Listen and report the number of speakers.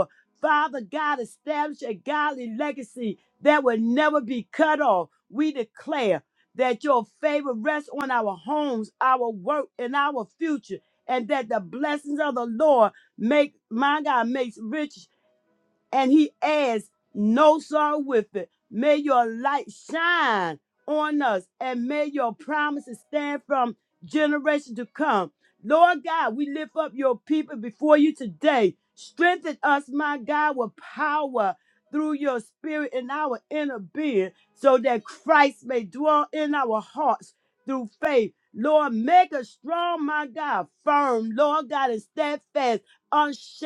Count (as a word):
one